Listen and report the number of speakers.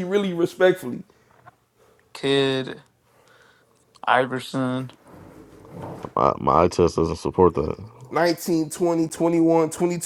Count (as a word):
three